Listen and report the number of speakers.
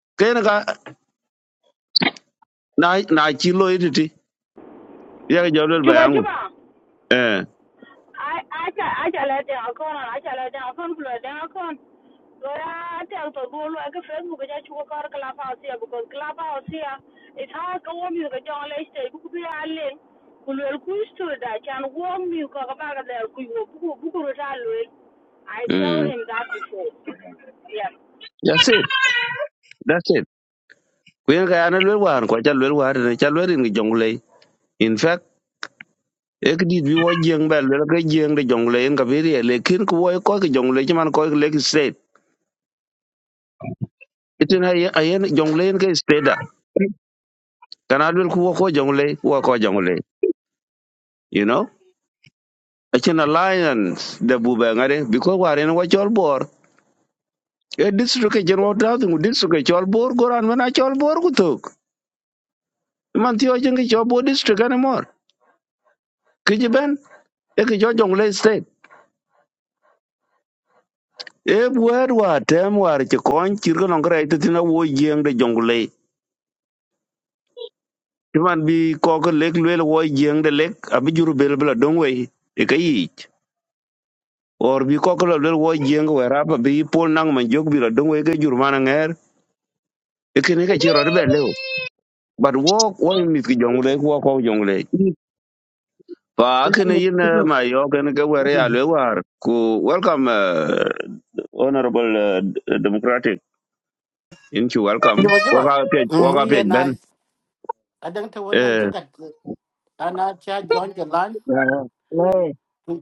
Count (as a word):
four